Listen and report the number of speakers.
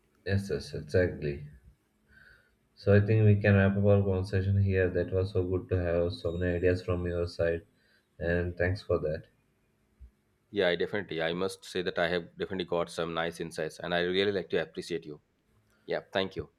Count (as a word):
two